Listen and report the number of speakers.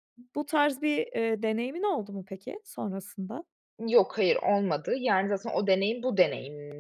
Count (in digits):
2